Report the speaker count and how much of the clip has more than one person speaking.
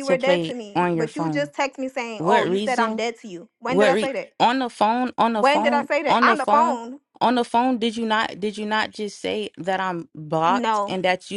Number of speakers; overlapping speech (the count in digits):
2, about 42%